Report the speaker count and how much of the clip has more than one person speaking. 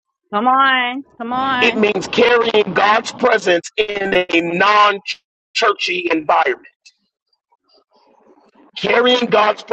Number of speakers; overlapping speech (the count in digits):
2, about 2%